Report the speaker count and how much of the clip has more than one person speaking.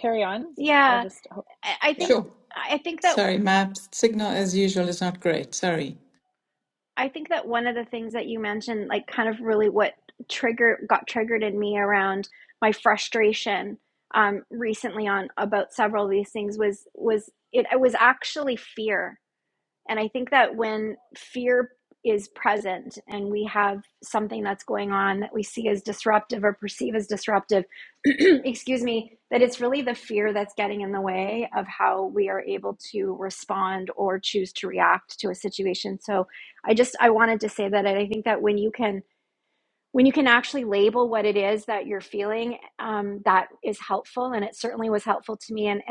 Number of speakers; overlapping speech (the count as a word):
three, about 1%